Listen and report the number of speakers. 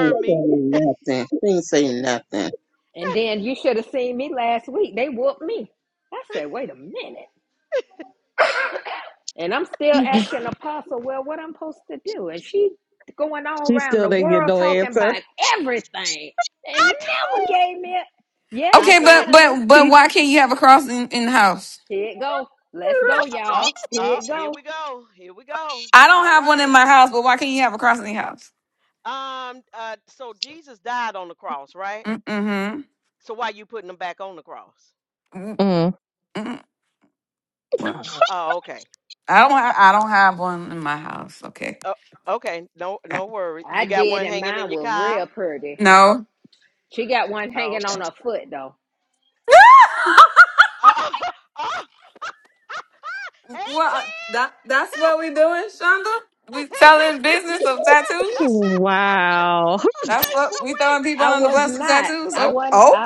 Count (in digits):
5